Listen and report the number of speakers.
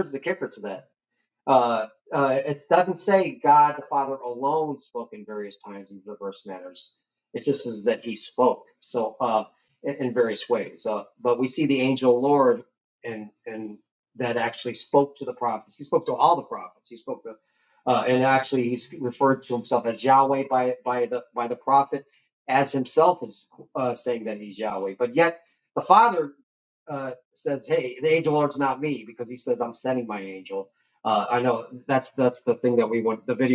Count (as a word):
one